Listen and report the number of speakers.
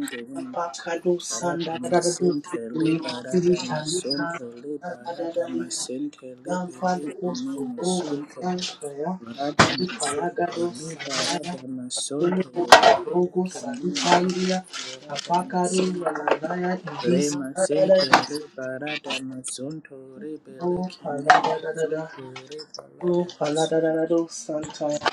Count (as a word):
two